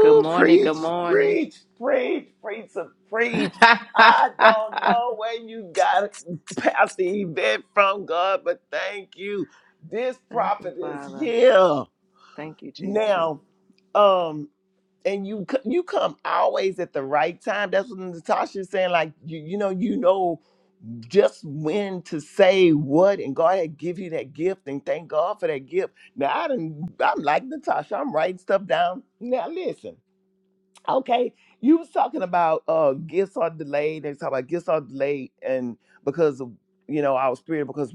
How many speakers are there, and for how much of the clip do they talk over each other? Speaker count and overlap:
2, about 8%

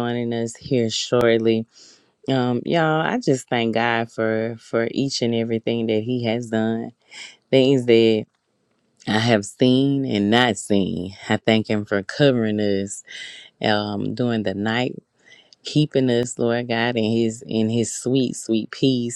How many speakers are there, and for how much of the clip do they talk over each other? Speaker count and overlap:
1, no overlap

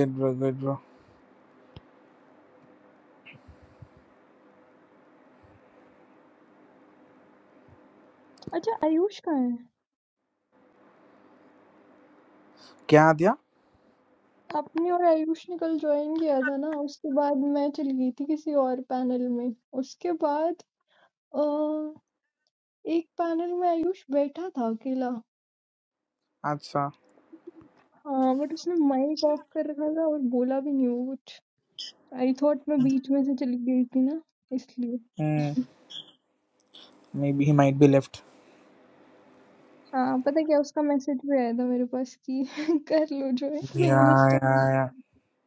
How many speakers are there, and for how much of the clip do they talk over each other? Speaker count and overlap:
2, about 2%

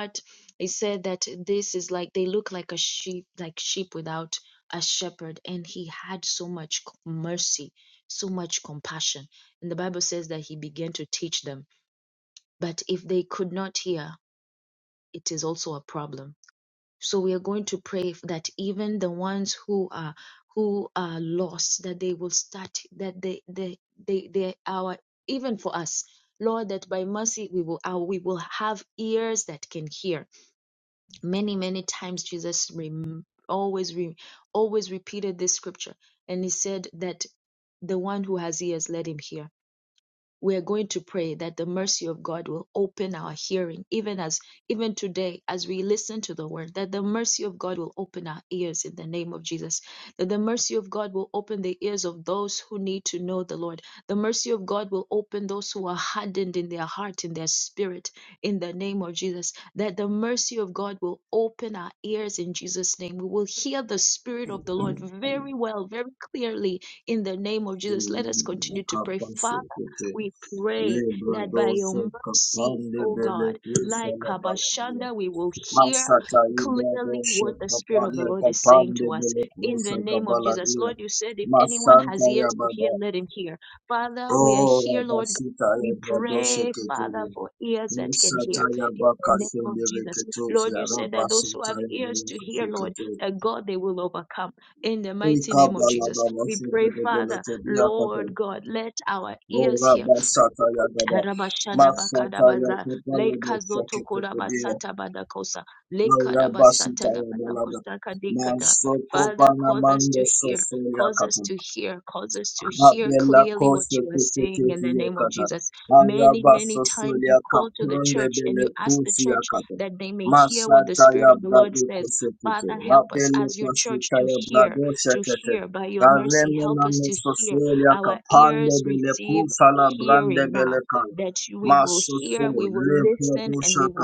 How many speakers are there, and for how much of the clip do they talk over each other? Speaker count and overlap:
2, about 36%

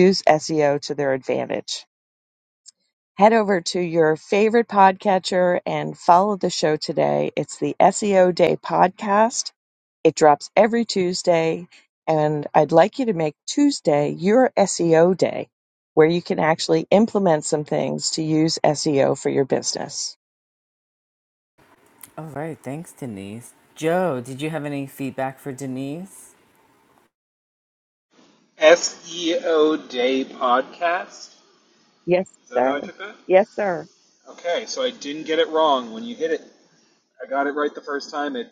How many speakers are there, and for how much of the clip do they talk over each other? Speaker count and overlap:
3, about 1%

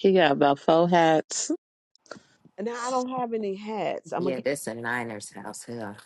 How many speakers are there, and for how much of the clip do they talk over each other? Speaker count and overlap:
3, about 4%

